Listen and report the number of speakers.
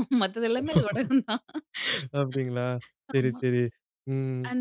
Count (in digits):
2